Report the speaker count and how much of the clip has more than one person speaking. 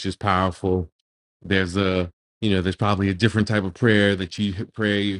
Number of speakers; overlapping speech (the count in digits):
1, no overlap